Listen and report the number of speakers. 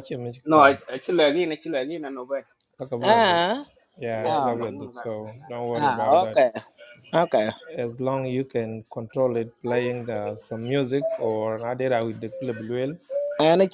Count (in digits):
3